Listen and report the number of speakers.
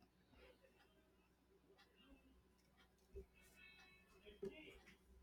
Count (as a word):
zero